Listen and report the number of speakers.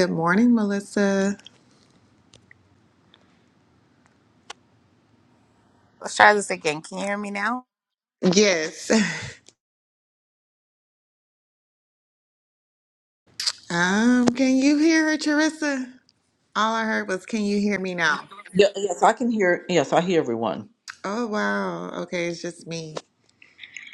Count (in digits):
3